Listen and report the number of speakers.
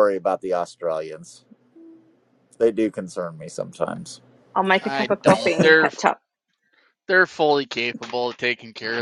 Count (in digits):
3